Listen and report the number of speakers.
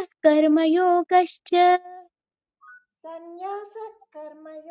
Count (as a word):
two